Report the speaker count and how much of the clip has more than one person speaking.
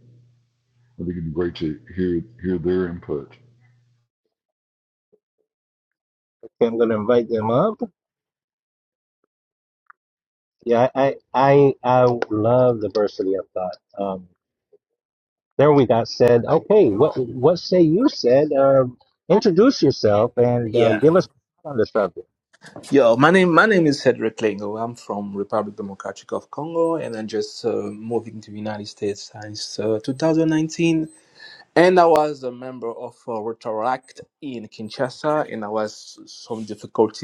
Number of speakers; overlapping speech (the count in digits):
3, about 1%